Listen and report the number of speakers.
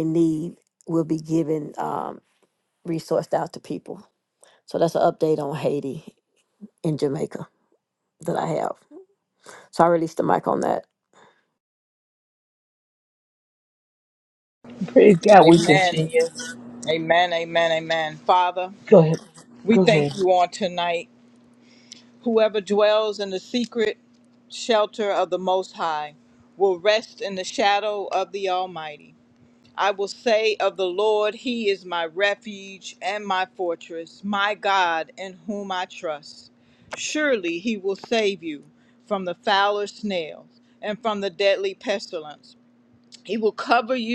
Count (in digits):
3